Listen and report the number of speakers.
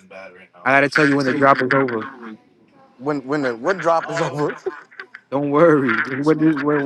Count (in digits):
3